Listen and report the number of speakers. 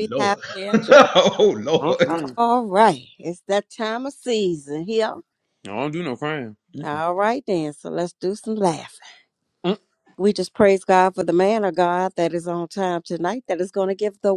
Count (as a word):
three